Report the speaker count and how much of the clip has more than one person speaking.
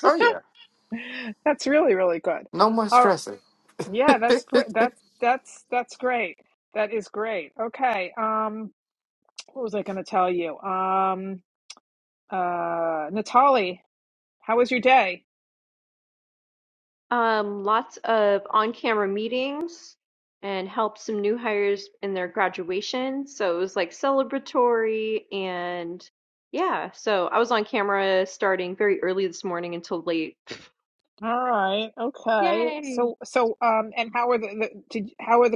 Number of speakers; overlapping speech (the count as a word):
three, about 3%